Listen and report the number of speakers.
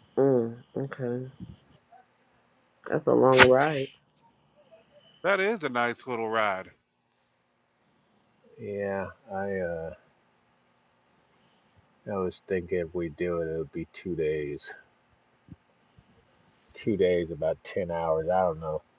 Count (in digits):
3